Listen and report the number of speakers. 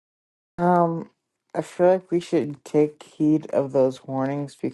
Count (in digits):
1